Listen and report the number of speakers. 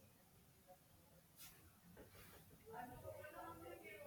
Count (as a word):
zero